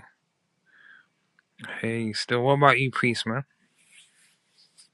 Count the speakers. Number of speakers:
one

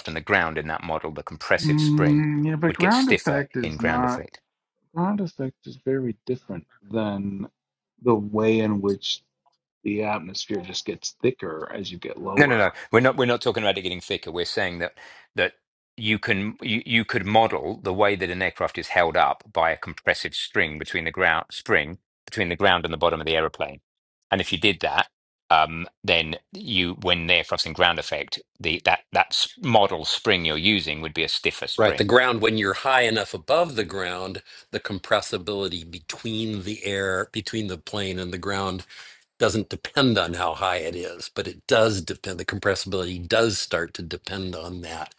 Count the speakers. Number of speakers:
three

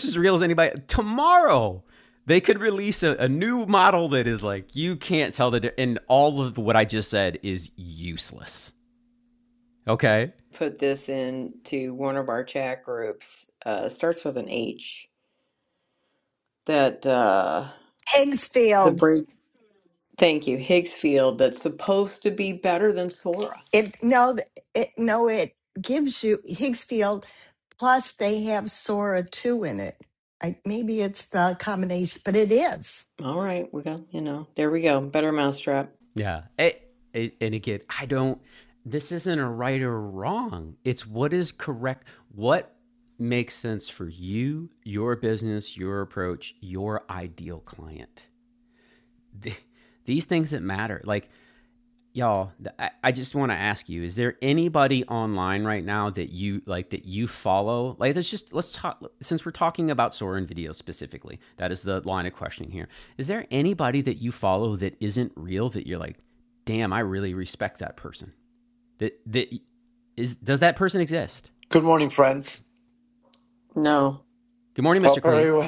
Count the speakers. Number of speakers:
four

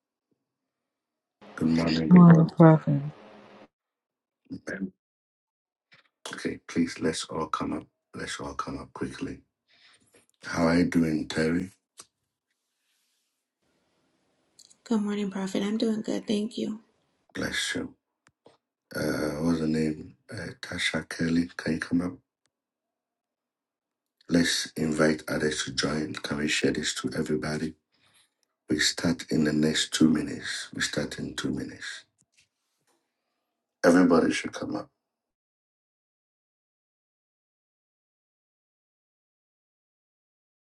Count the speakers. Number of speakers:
three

